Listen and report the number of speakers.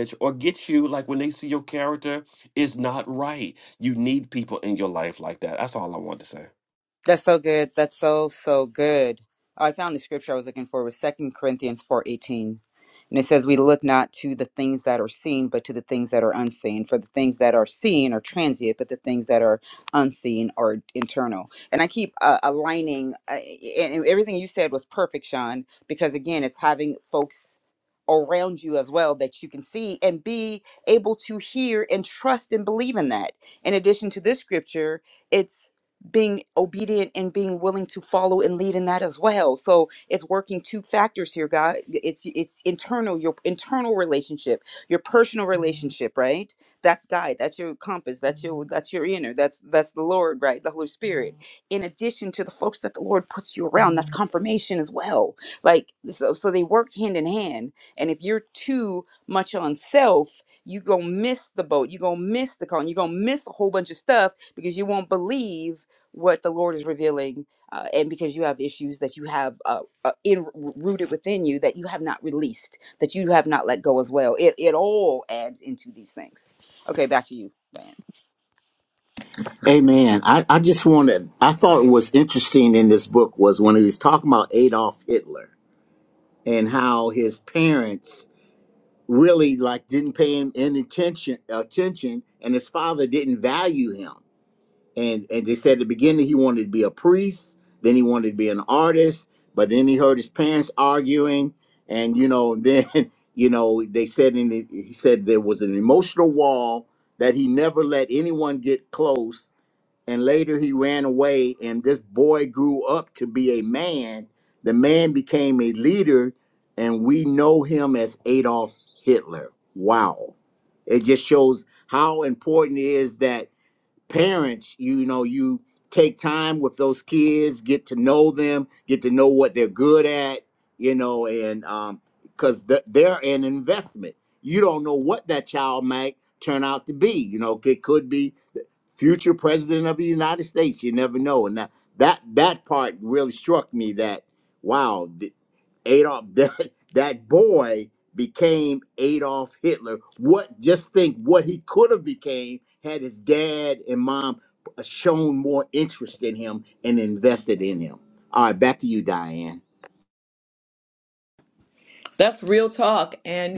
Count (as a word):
four